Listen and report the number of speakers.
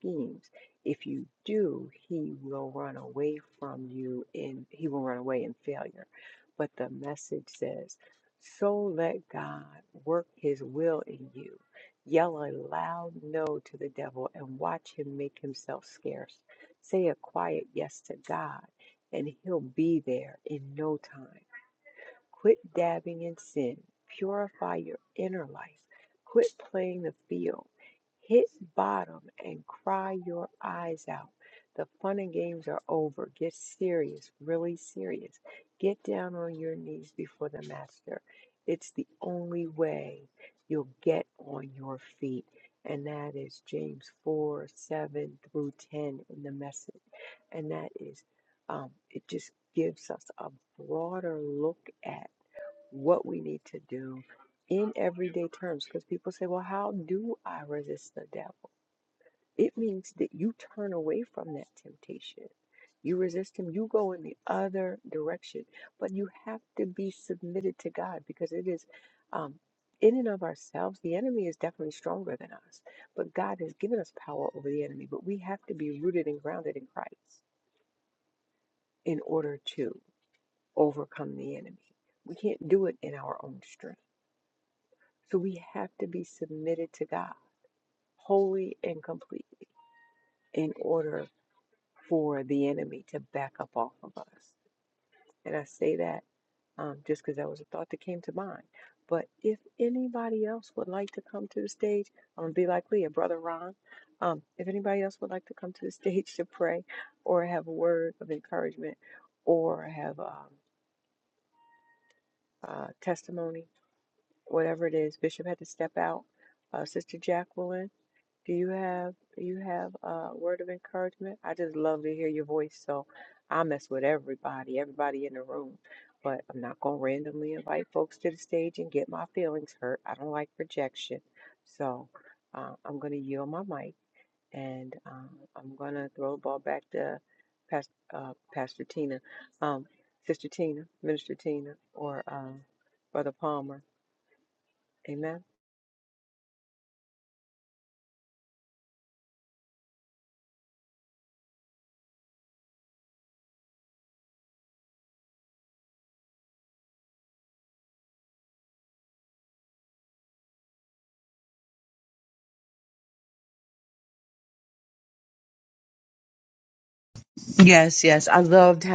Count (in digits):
2